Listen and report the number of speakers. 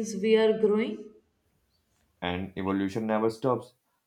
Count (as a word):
two